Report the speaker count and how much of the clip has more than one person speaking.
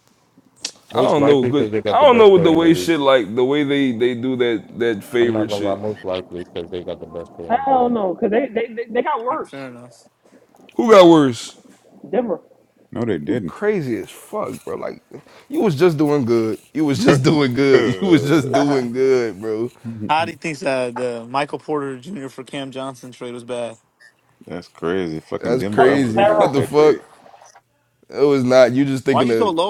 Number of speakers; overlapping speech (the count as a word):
five, about 18%